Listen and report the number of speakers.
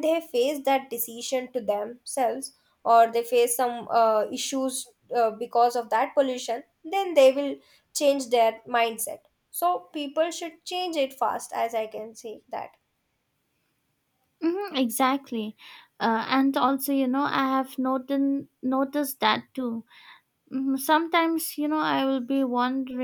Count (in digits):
2